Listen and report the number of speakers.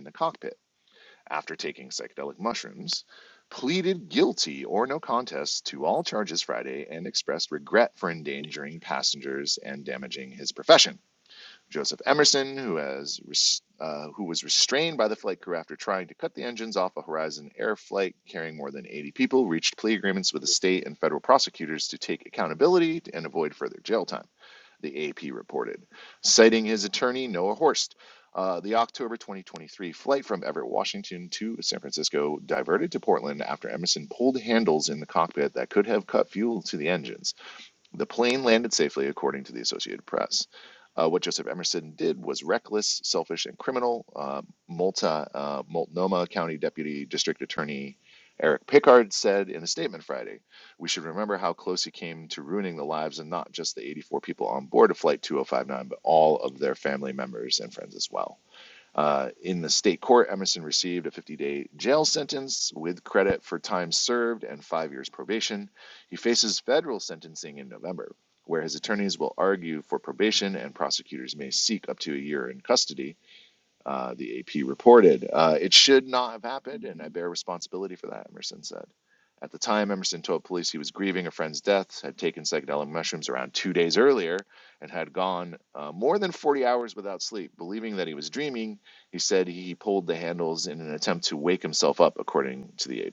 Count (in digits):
1